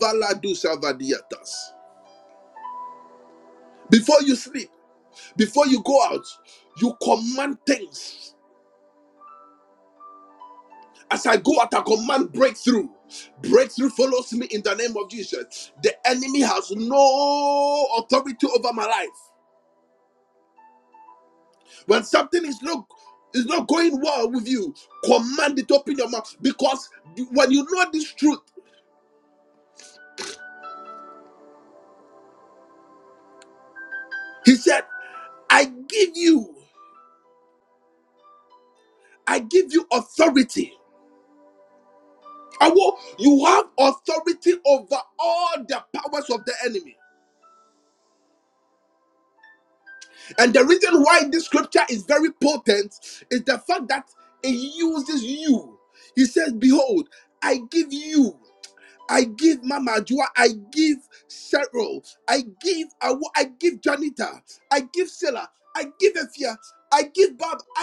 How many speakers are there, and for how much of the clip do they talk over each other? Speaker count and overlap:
one, no overlap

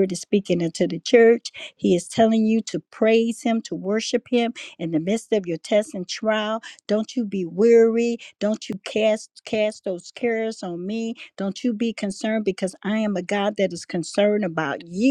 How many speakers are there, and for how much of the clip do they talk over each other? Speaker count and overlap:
one, no overlap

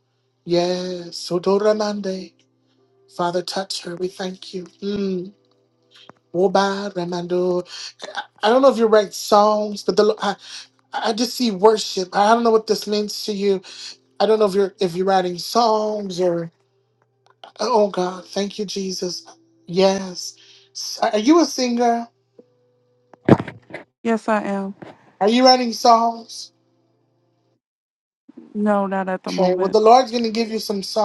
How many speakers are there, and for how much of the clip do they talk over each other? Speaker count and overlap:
two, about 1%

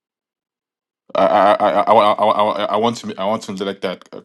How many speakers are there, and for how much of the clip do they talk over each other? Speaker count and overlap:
one, no overlap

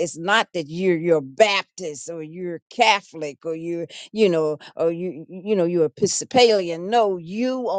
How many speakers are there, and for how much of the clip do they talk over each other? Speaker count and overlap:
one, no overlap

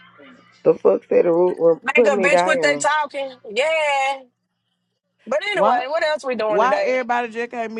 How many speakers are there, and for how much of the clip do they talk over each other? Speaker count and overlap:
three, about 23%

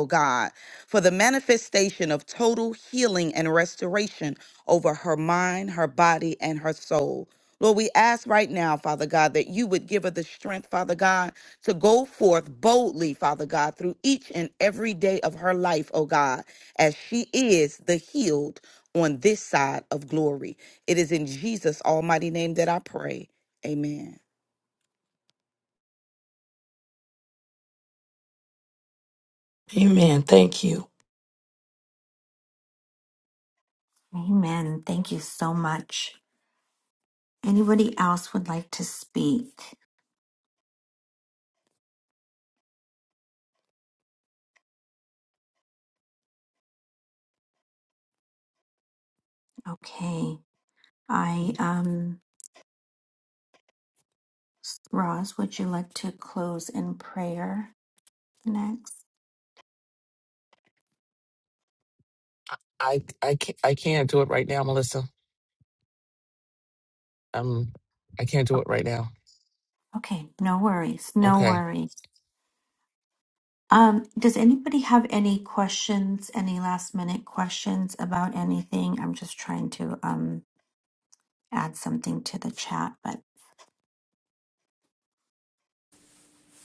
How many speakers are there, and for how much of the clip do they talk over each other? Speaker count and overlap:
four, under 1%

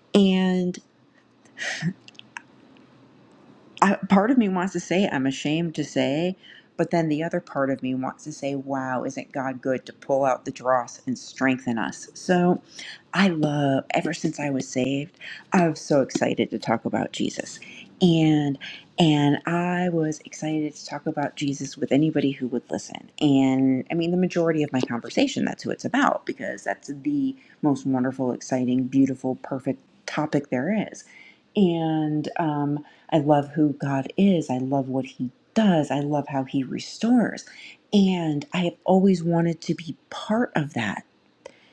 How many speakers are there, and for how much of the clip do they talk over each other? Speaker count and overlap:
one, no overlap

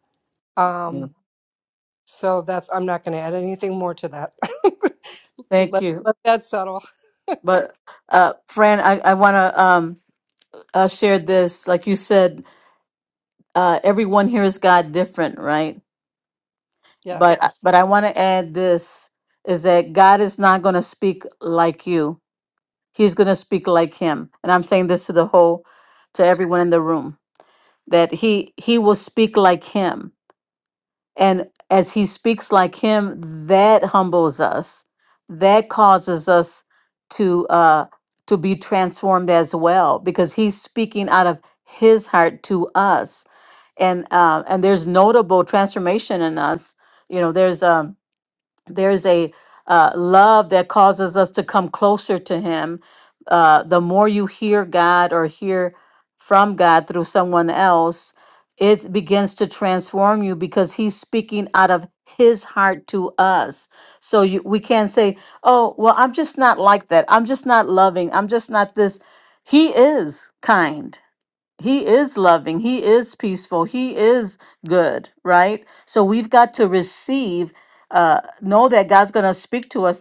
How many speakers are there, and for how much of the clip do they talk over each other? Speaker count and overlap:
two, about 1%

